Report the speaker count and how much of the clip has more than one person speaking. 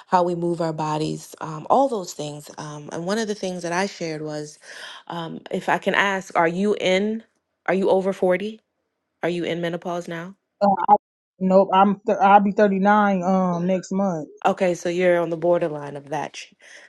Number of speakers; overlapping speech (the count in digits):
2, no overlap